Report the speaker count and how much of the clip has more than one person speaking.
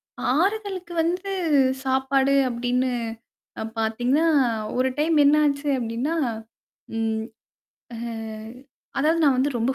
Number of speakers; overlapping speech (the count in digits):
1, no overlap